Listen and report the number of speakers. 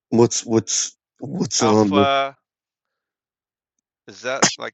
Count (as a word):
two